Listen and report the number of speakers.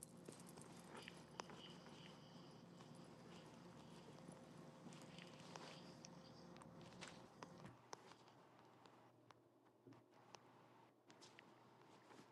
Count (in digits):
0